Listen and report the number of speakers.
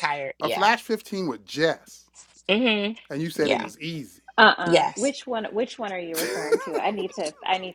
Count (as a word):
three